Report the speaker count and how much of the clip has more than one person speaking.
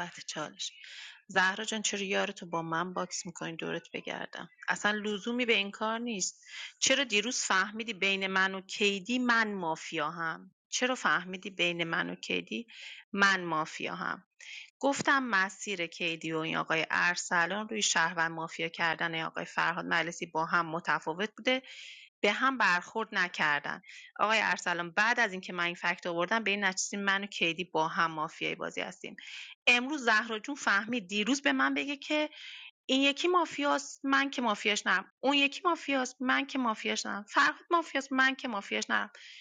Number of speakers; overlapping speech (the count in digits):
1, no overlap